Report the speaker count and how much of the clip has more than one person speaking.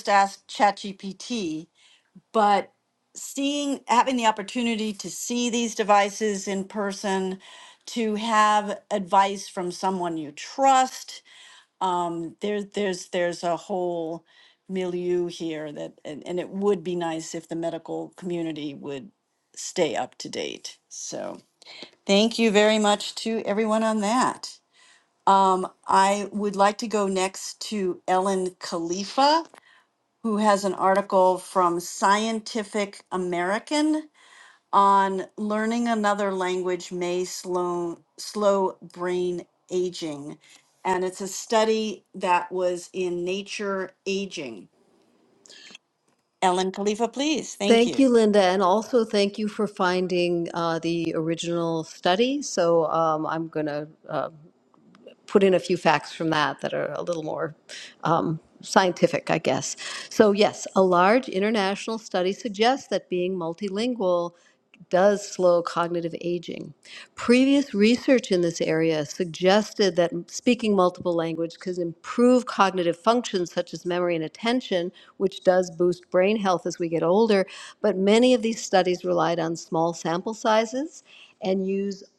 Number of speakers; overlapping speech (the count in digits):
2, under 1%